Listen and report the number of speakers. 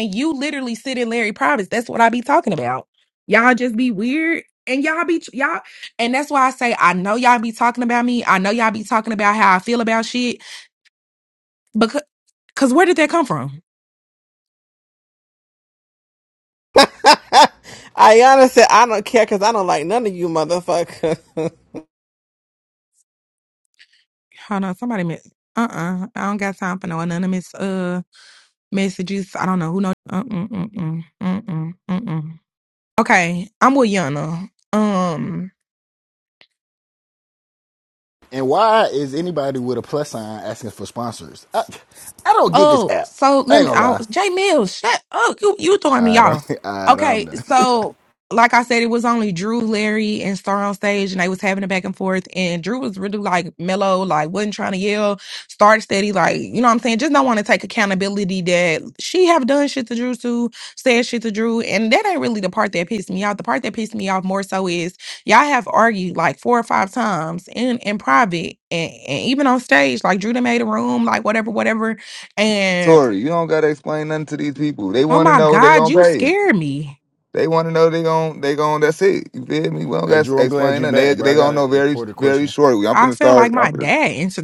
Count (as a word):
four